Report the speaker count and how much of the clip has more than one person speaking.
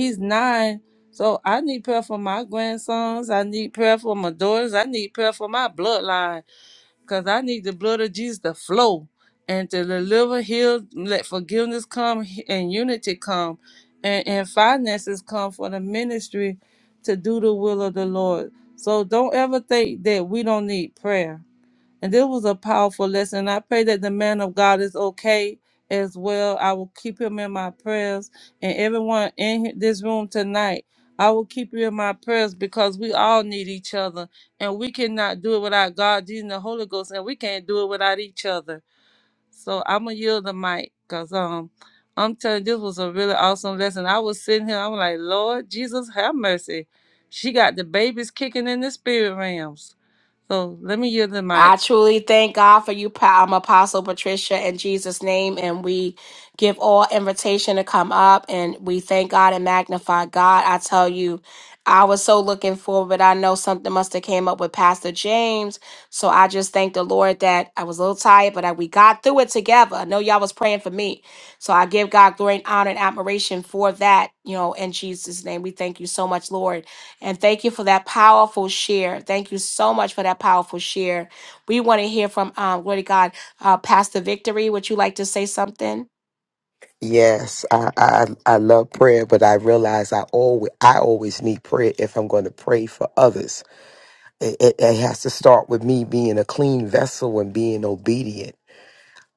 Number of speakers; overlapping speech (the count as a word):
three, under 1%